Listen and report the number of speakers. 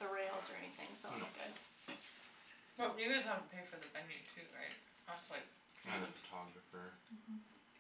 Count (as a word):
three